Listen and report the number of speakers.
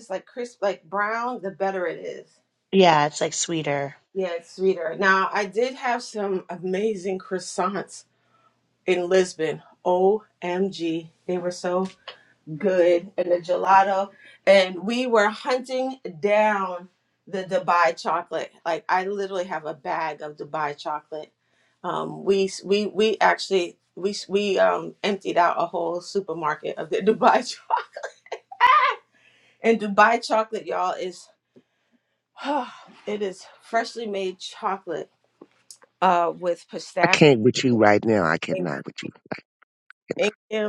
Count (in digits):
3